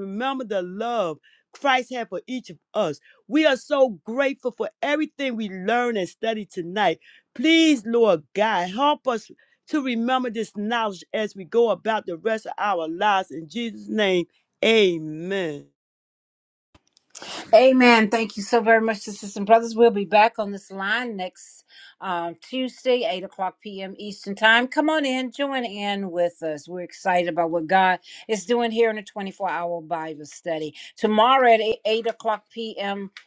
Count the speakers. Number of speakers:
two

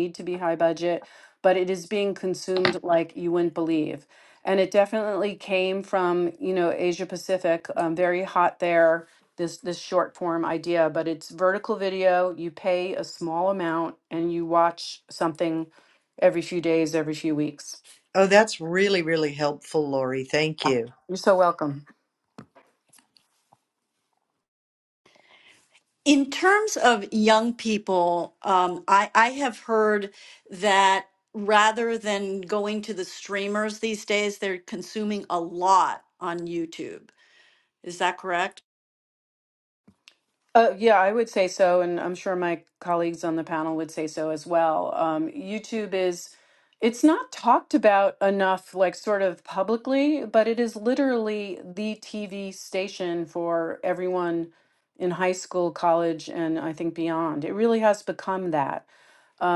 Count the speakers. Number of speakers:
three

